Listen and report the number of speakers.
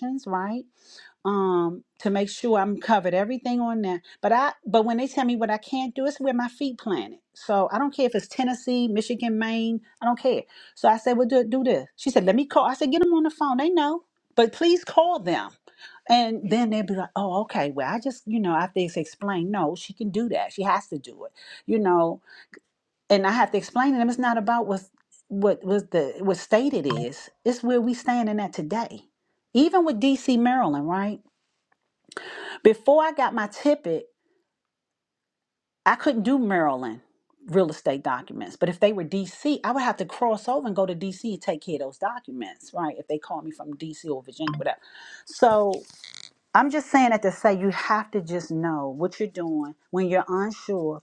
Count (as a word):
one